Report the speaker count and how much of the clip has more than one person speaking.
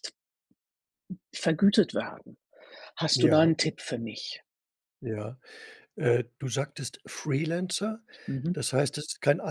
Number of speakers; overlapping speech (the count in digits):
2, about 4%